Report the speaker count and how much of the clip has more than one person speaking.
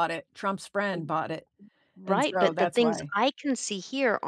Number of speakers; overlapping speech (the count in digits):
2, about 27%